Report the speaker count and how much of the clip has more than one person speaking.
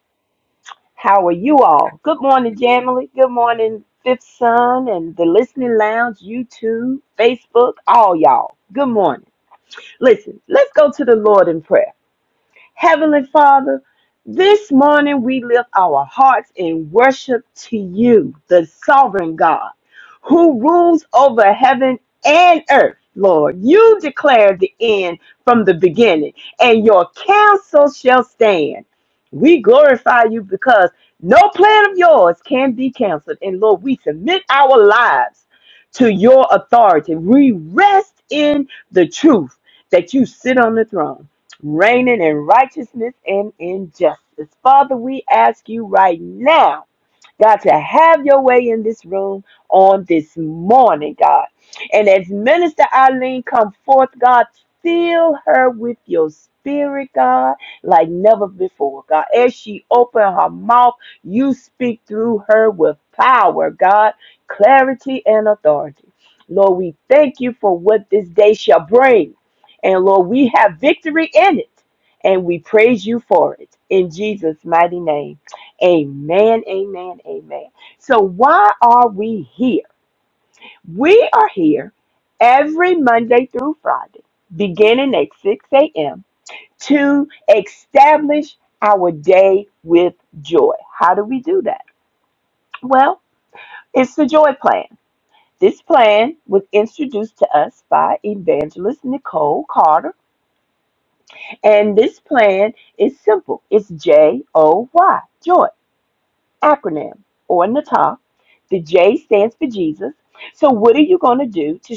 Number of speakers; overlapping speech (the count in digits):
1, no overlap